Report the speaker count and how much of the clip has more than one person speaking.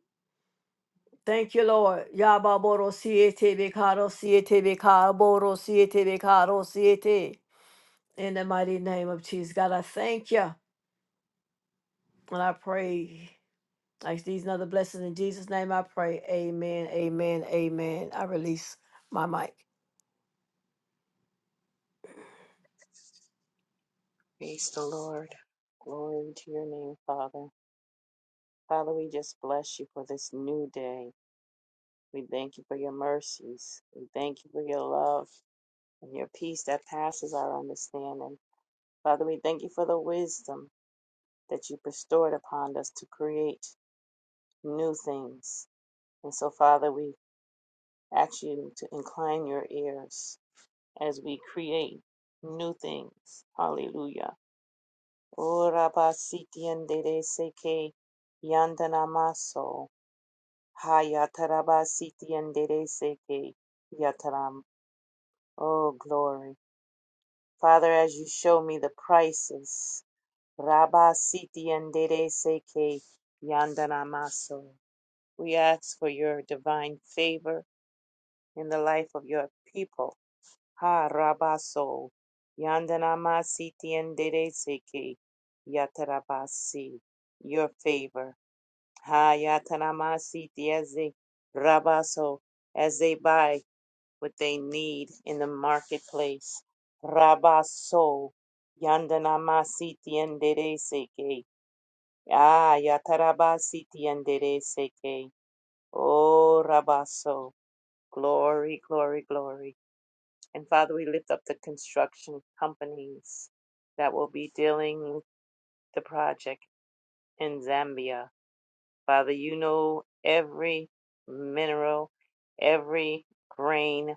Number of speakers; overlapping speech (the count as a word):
two, no overlap